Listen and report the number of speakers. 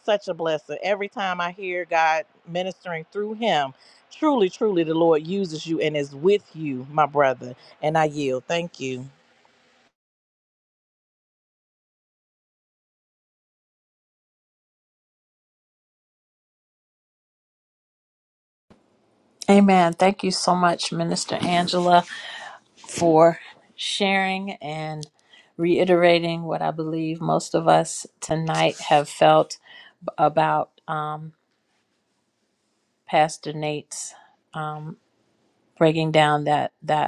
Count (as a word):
two